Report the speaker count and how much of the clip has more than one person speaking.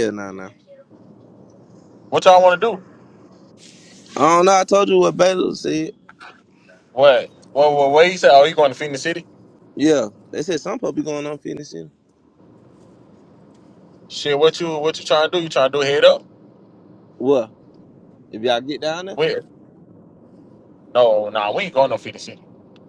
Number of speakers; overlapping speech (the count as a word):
two, no overlap